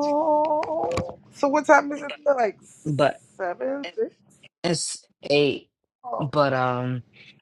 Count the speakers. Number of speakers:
2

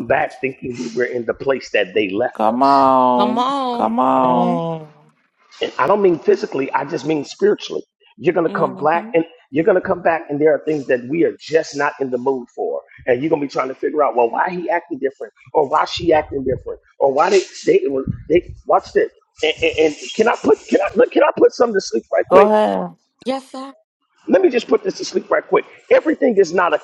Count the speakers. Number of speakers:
4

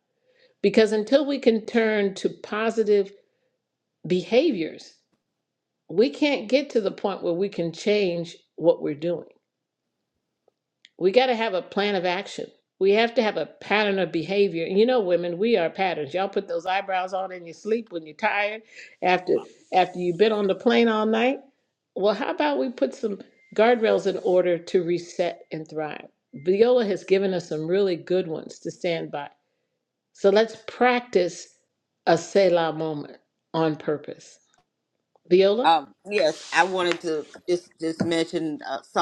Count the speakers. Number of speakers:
2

